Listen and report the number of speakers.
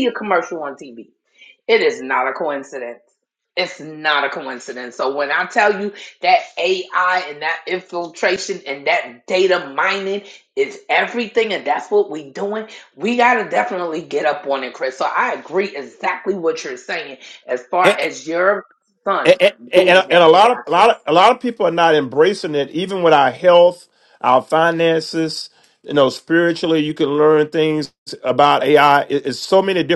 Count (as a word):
two